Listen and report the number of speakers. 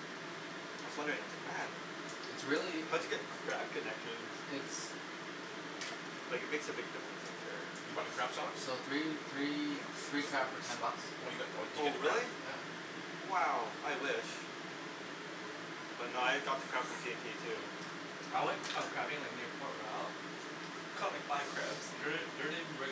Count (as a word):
four